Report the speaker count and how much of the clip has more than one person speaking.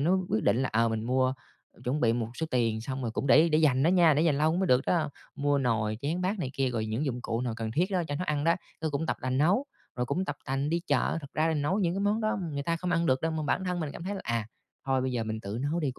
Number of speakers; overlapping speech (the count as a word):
one, no overlap